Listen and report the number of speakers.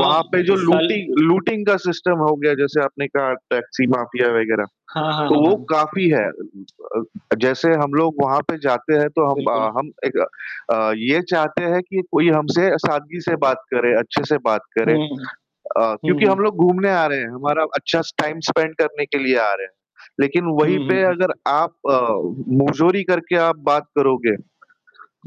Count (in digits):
2